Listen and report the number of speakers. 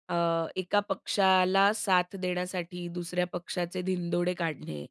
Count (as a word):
one